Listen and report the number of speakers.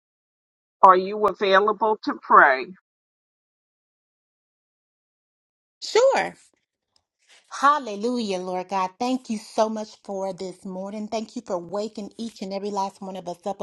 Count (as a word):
two